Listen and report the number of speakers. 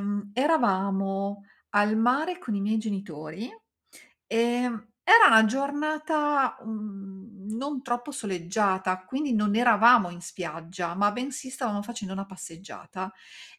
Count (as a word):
one